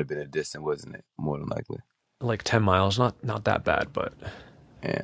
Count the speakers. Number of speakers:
two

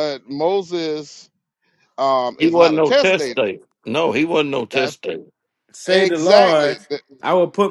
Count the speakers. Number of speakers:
three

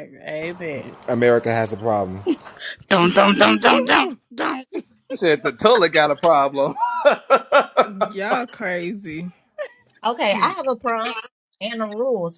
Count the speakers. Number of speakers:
five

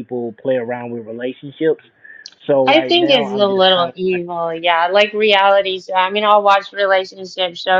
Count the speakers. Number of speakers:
two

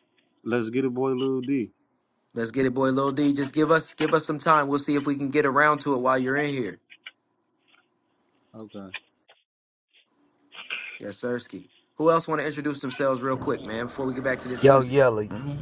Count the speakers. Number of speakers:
three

